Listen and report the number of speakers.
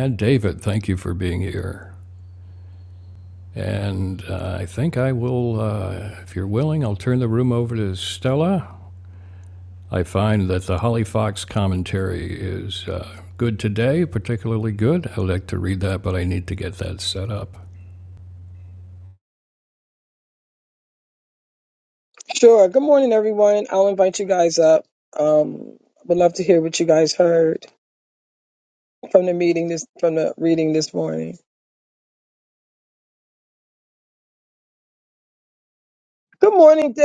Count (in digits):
2